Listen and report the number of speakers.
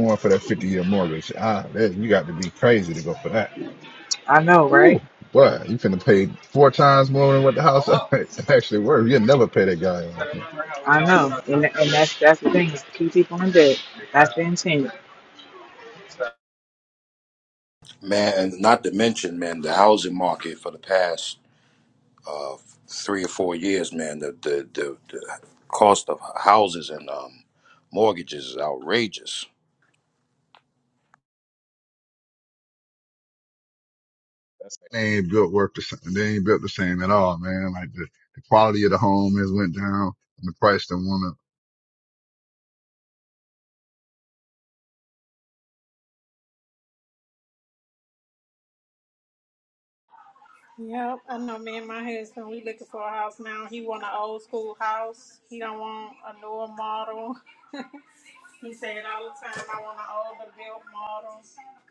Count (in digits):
4